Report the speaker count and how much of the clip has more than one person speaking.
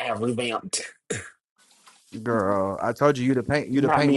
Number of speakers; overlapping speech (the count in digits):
2, about 11%